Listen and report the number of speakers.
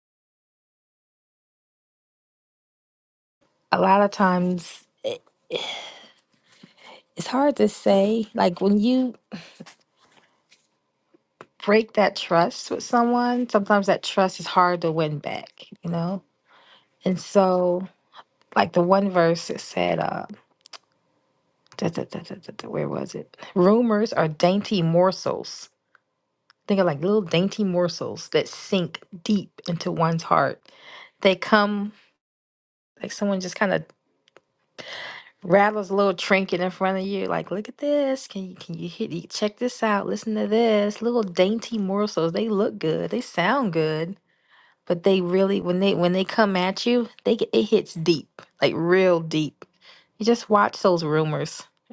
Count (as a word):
one